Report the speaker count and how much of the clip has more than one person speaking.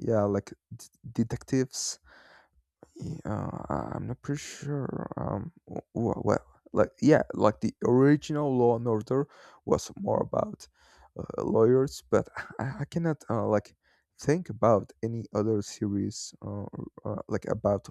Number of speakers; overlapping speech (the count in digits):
1, no overlap